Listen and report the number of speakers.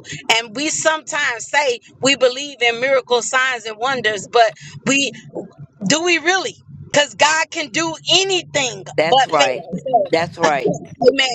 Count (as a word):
two